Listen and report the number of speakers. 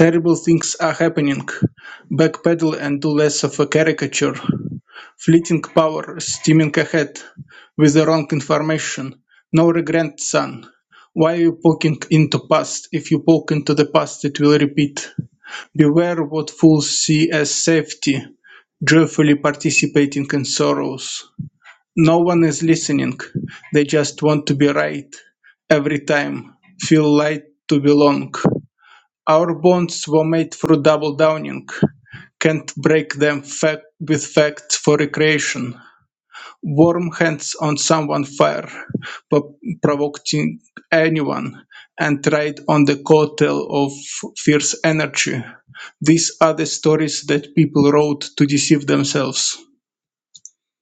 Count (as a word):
one